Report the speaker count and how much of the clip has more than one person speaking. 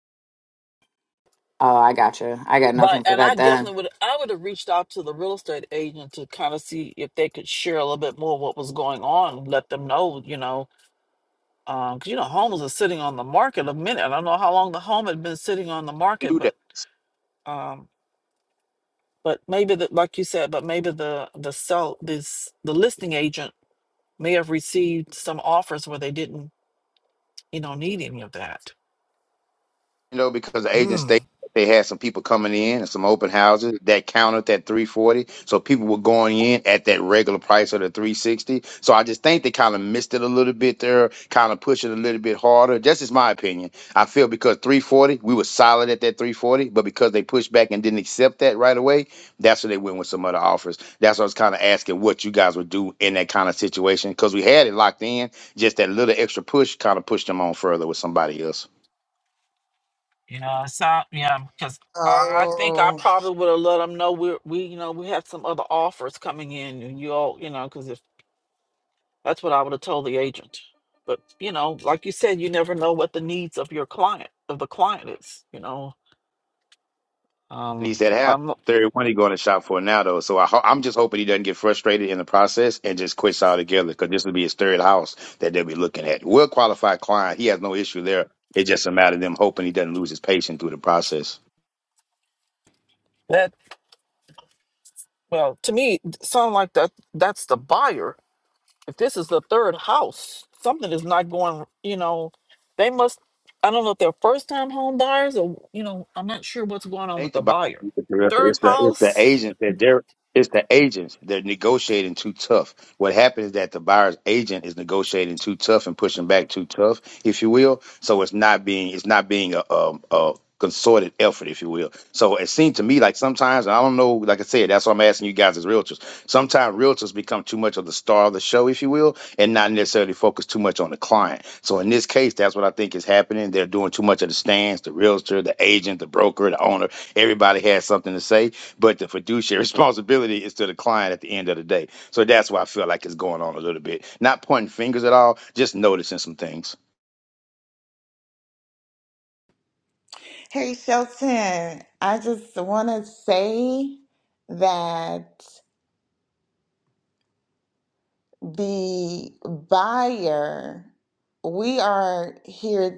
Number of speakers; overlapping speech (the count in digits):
4, about 3%